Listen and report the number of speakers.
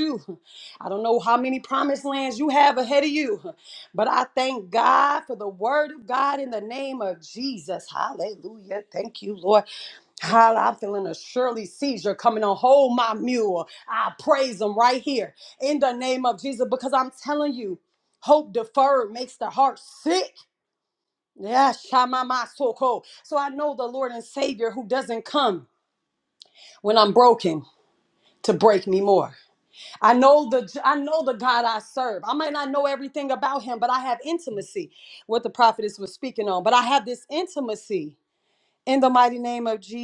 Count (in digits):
1